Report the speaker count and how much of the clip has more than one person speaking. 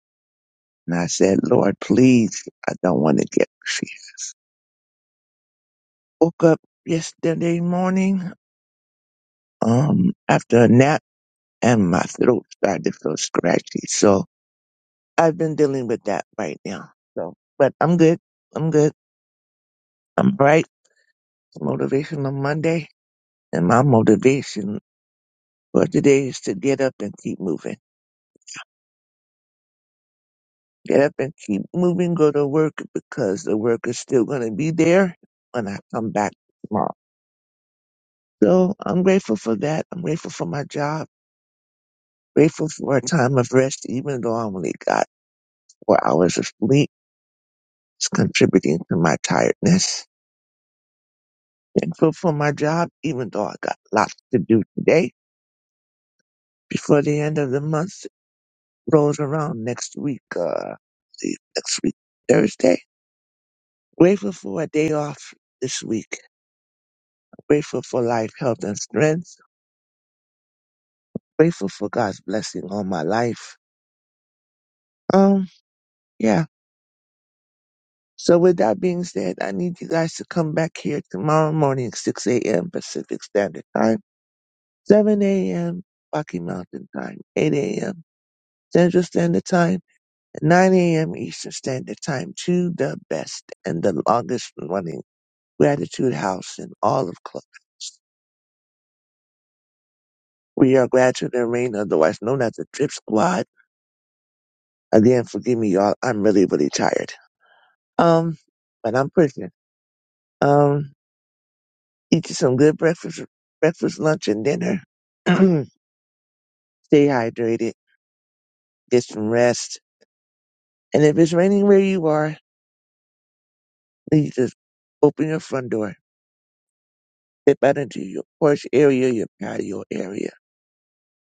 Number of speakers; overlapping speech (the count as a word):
one, no overlap